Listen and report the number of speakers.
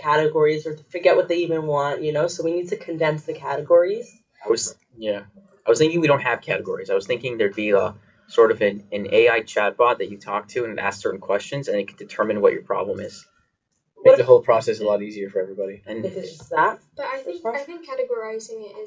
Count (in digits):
4